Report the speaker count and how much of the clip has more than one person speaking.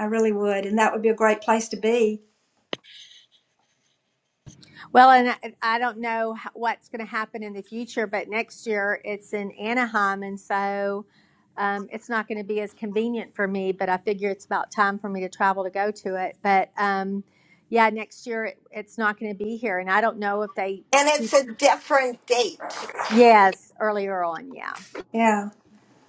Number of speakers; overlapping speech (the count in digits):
3, no overlap